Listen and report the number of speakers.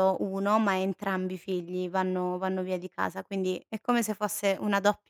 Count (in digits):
1